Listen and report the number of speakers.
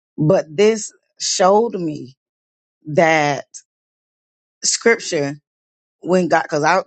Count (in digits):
1